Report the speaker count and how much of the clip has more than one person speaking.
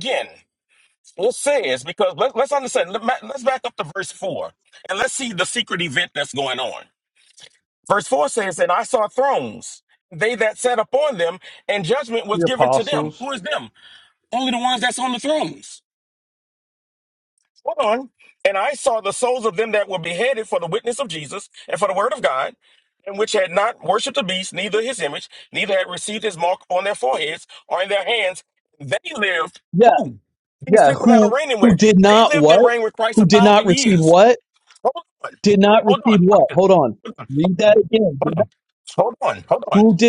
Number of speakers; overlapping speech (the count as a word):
two, about 11%